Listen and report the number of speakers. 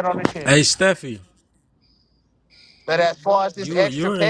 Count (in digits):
2